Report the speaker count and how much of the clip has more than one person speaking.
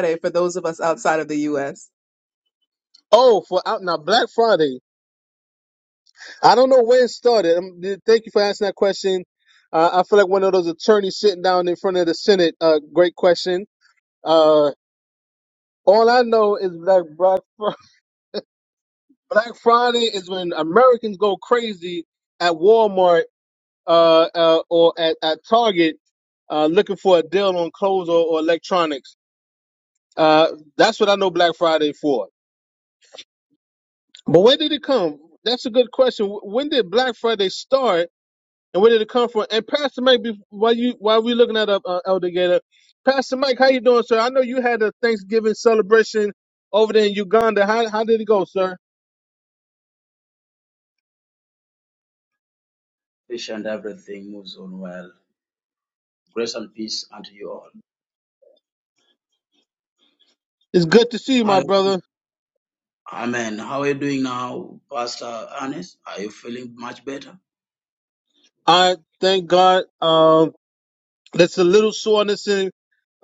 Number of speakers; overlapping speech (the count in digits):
3, under 1%